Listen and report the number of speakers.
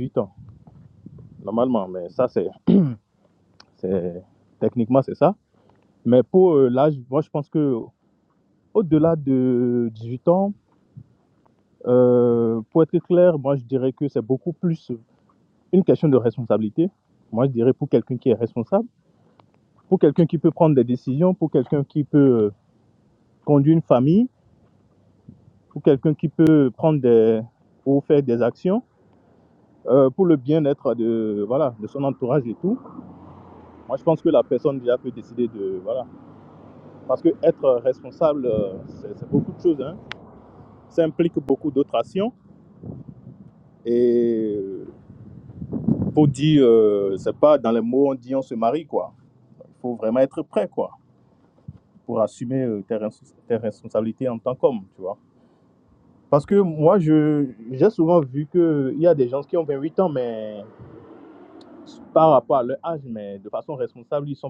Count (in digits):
1